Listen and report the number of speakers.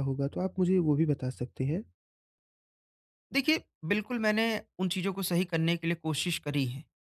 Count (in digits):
2